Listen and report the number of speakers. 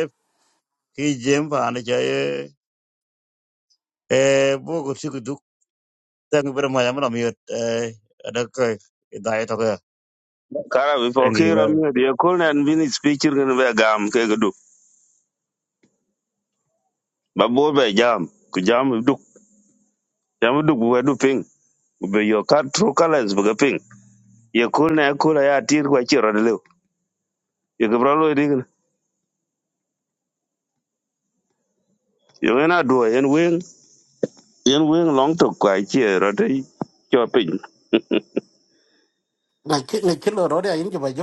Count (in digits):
3